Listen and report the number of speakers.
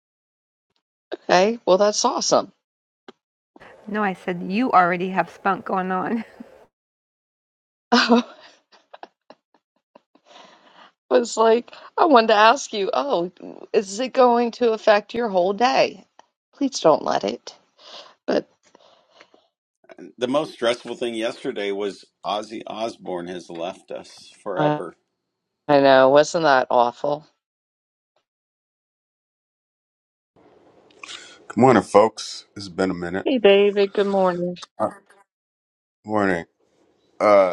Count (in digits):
4